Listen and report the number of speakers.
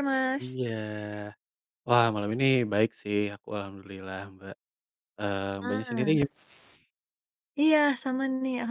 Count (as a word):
two